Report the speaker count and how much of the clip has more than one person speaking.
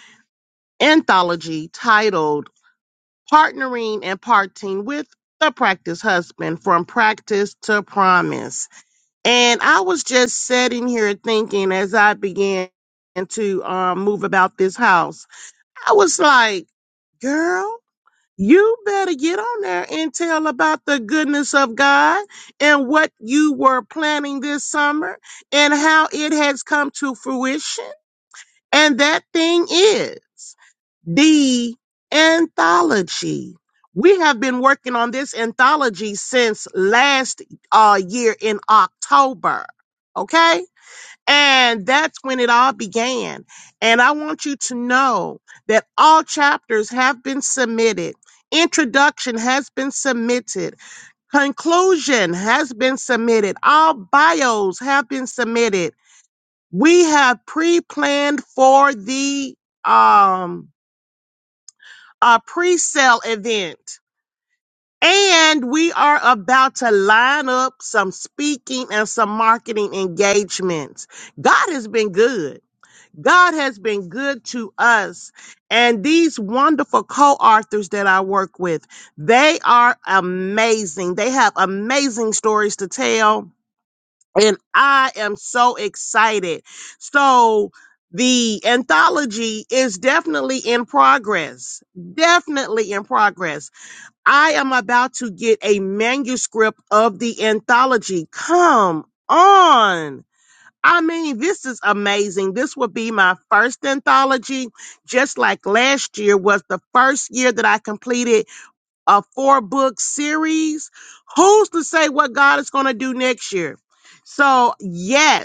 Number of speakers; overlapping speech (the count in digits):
1, no overlap